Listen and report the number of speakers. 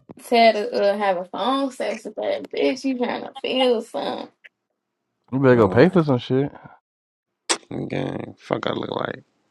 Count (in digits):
3